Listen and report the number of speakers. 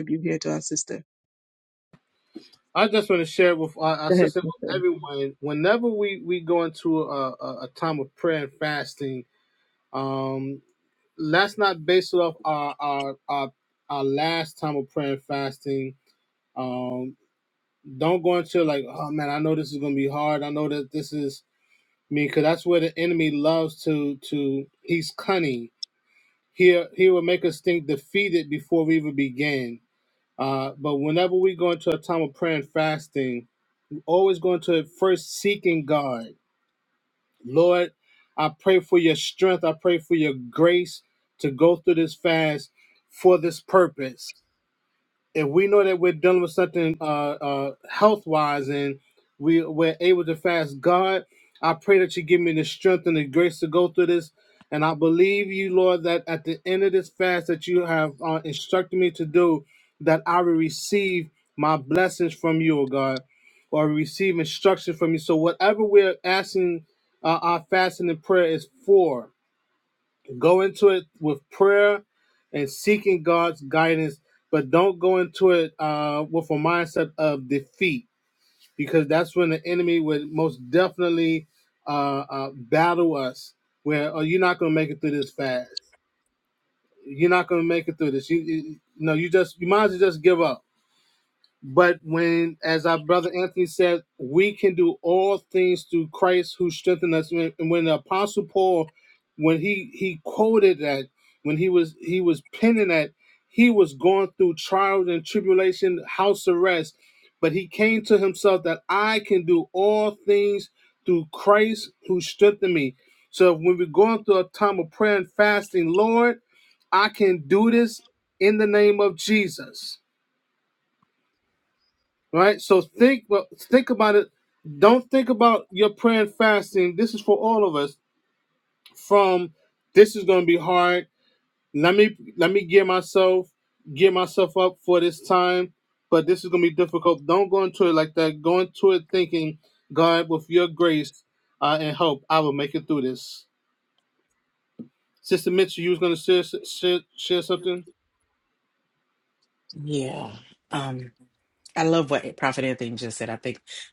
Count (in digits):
3